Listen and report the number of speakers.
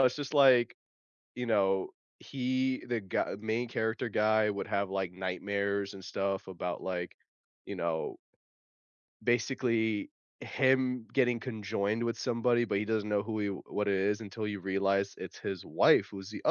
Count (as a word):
one